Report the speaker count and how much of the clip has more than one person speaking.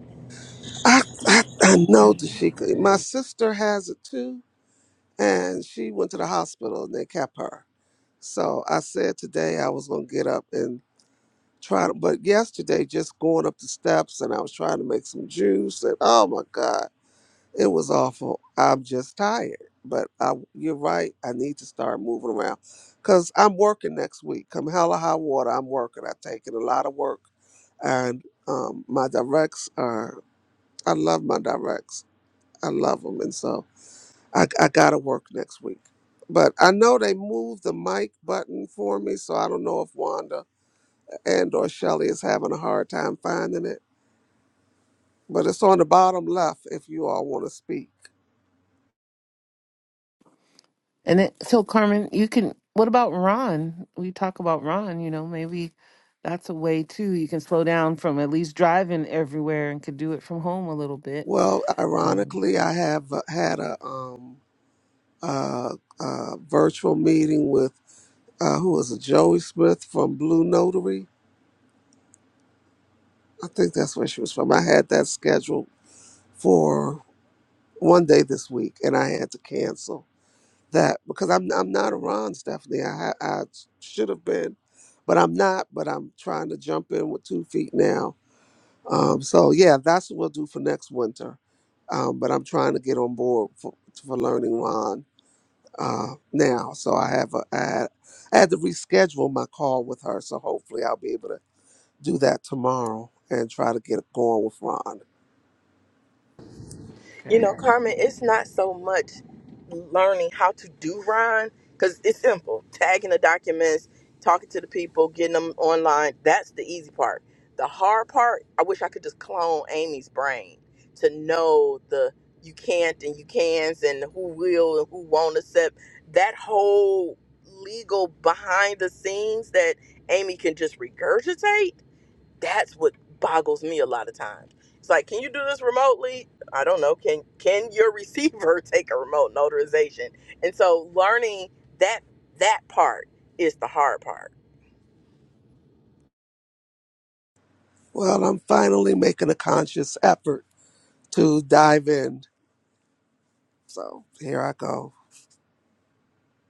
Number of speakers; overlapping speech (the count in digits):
3, under 1%